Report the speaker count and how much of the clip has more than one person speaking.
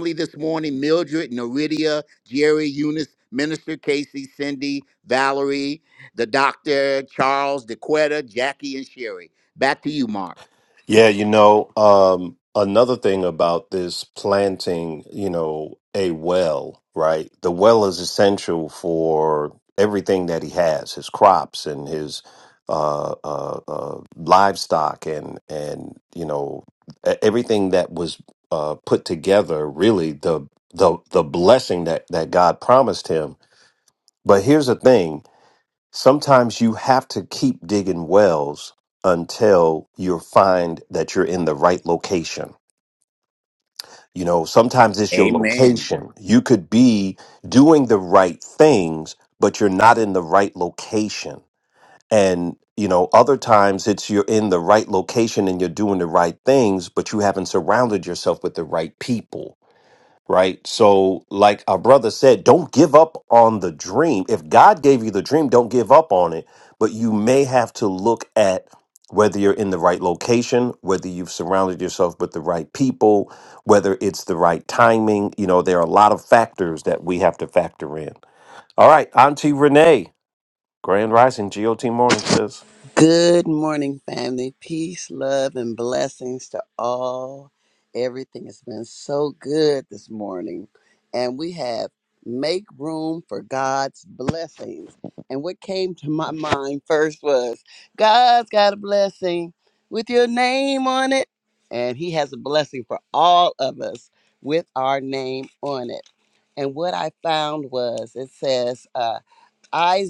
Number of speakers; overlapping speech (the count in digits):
3, about 1%